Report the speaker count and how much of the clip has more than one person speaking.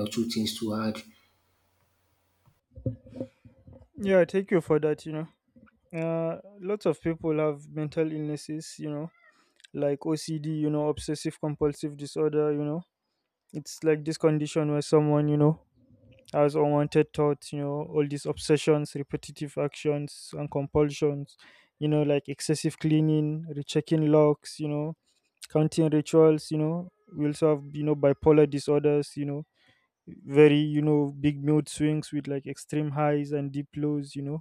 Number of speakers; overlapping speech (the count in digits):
2, no overlap